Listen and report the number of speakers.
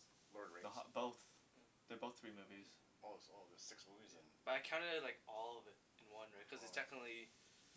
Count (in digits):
3